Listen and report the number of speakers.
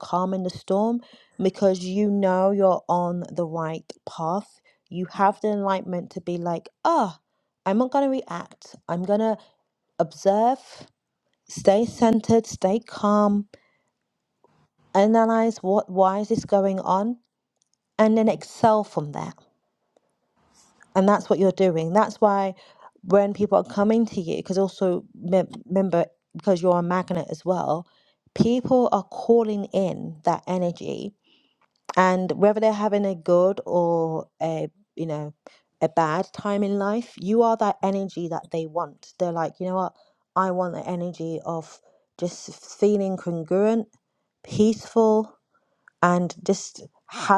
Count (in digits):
1